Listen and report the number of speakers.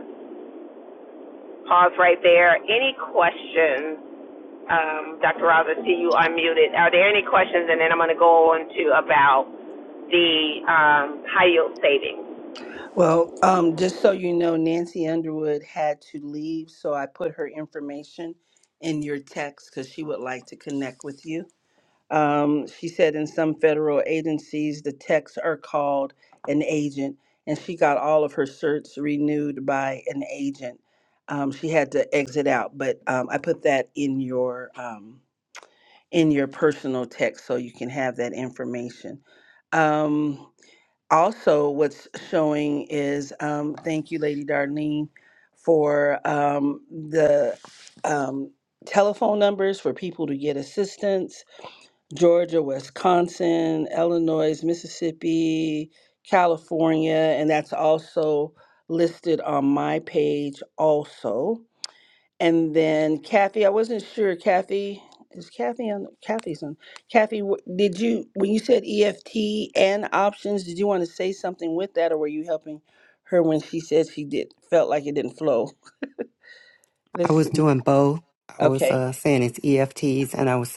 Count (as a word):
three